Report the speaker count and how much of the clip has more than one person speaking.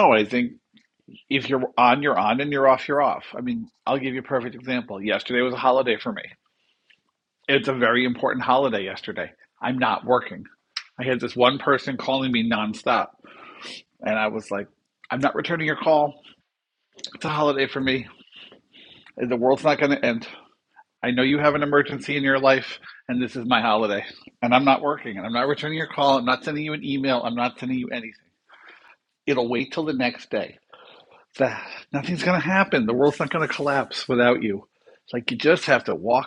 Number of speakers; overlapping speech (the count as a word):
one, no overlap